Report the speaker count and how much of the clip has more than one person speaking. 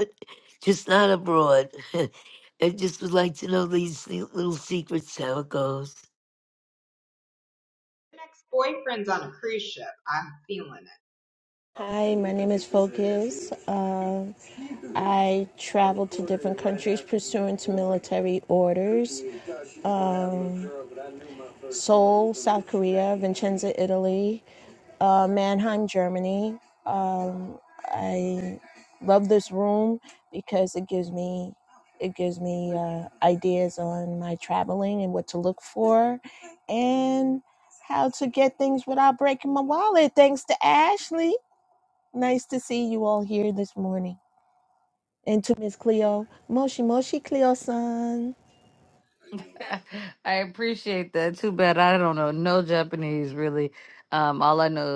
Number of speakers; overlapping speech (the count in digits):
4, no overlap